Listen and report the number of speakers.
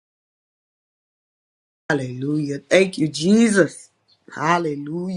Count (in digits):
1